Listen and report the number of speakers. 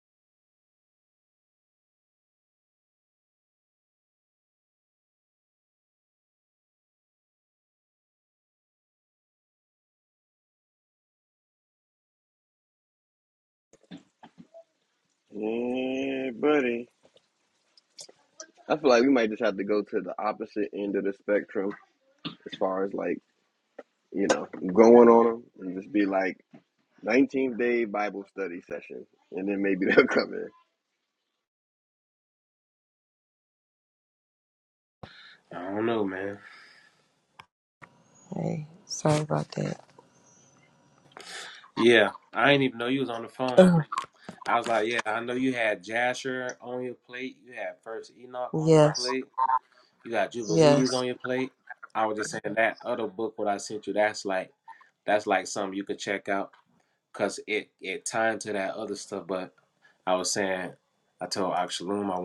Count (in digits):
3